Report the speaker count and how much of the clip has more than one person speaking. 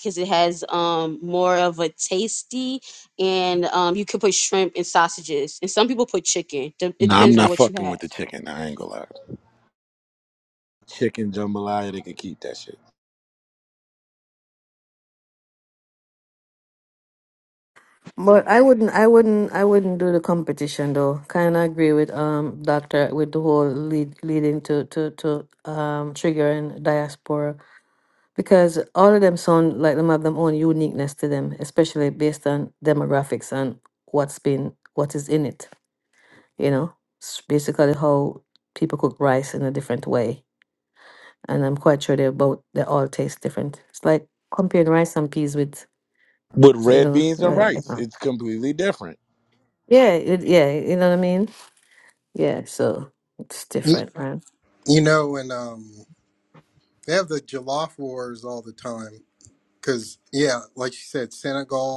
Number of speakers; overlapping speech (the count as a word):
four, about 4%